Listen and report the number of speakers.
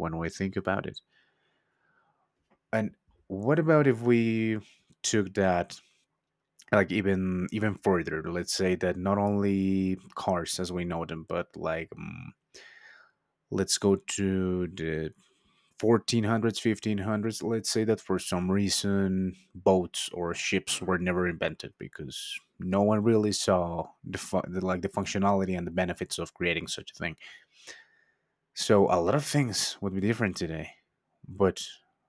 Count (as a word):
one